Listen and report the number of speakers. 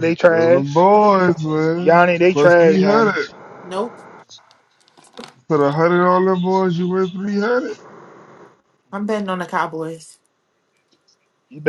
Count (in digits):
3